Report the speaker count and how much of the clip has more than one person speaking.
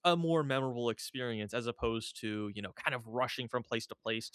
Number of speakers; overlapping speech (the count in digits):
1, no overlap